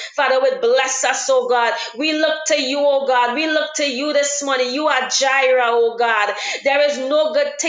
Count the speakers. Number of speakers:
one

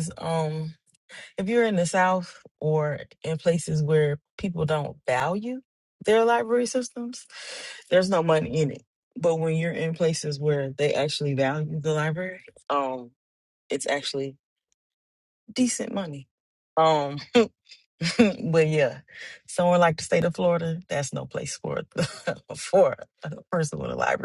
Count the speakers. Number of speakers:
one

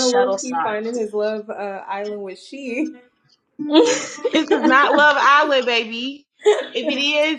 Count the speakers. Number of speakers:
three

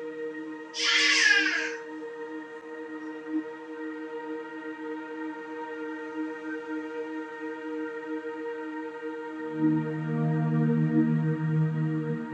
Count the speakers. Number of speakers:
zero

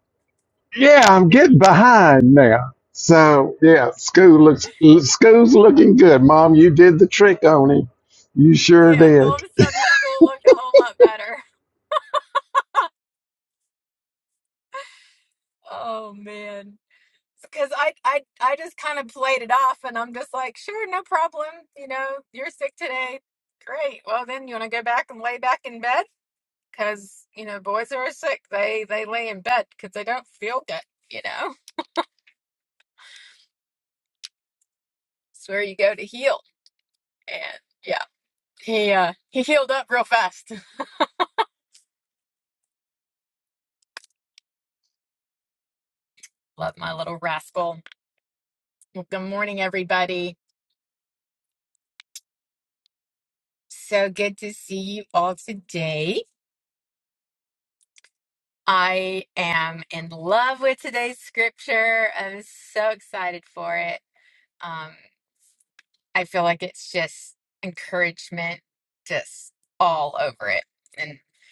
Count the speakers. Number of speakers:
two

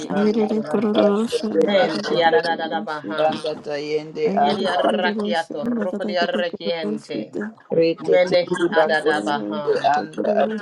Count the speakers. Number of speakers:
three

